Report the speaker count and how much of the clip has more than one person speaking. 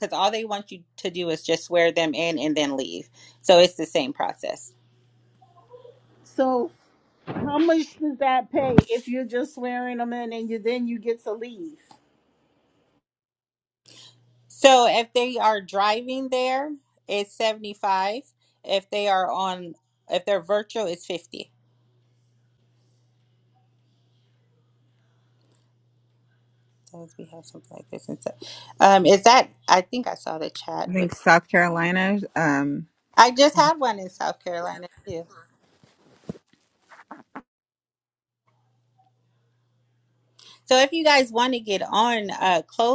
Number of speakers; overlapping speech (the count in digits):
3, about 1%